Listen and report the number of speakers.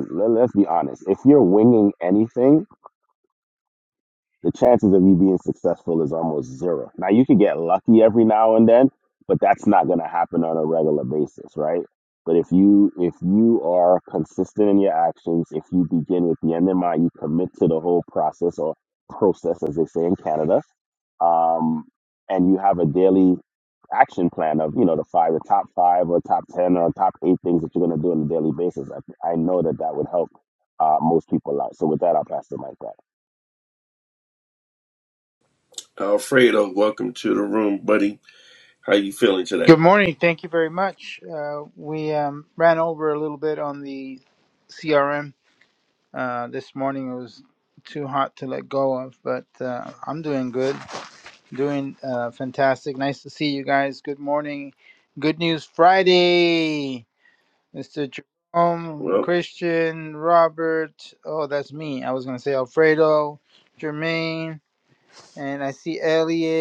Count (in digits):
3